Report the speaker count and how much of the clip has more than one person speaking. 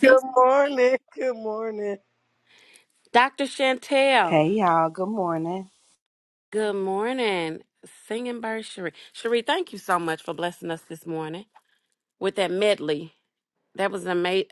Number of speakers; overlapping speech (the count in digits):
3, about 2%